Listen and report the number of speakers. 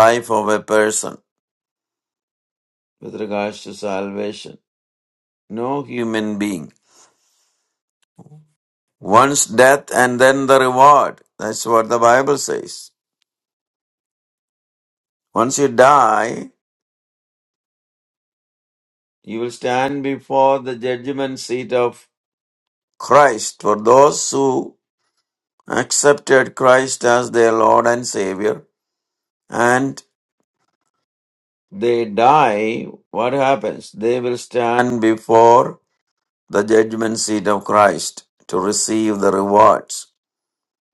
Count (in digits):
1